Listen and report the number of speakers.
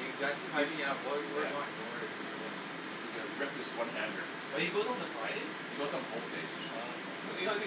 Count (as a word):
three